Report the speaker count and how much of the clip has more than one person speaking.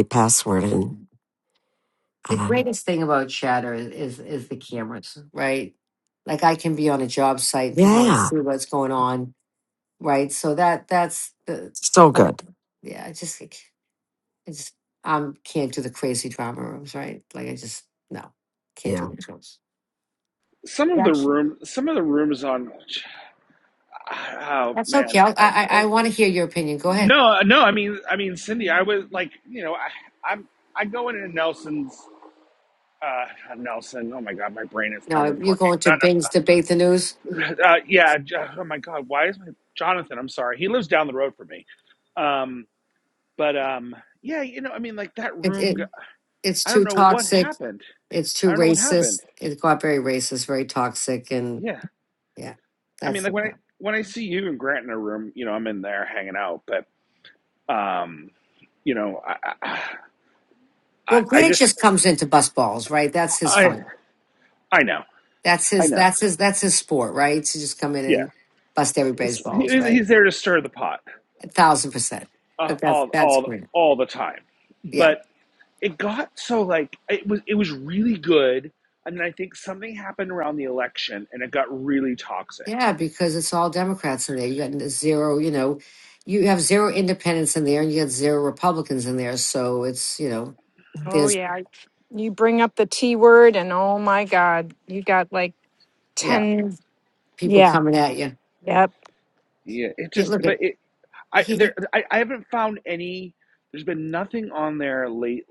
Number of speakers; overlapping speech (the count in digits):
4, about 9%